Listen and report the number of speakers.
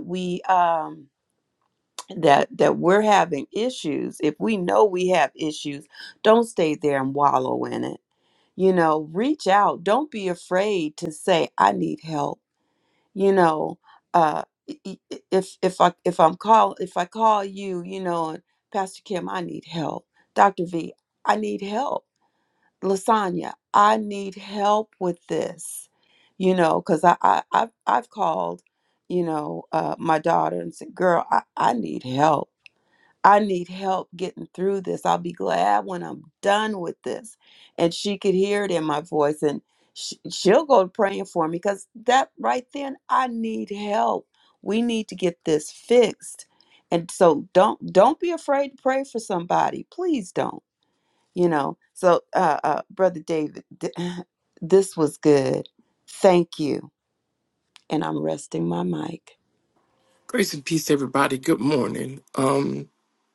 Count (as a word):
two